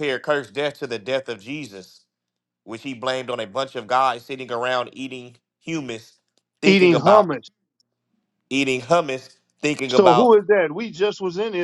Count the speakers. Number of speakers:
2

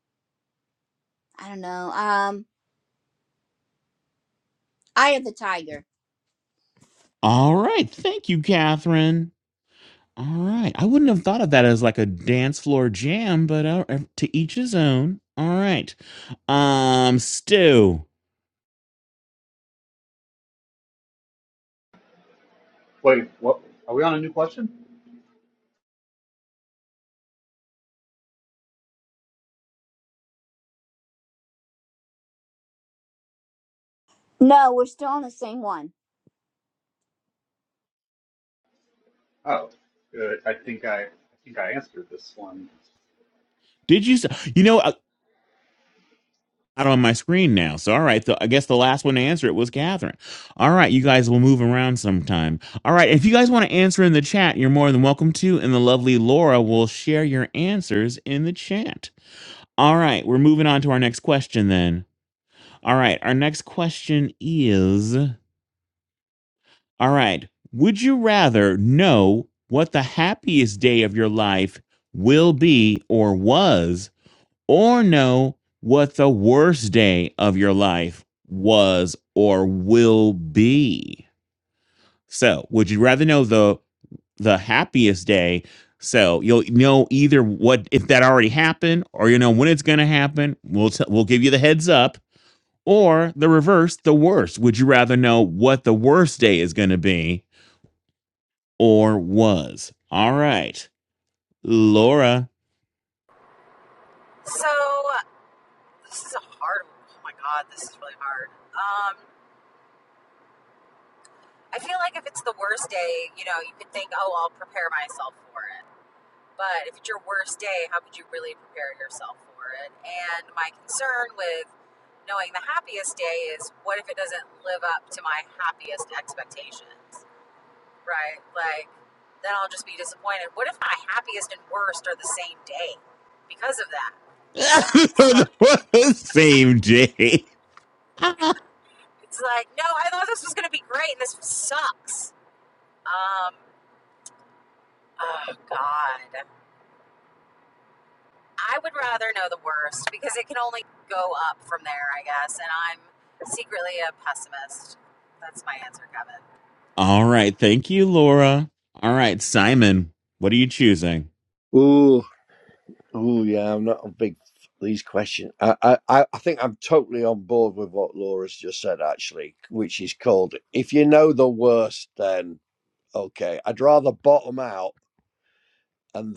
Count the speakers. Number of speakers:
5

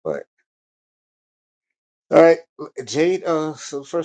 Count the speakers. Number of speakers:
1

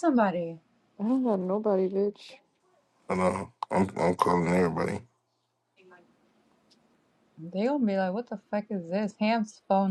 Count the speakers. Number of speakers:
3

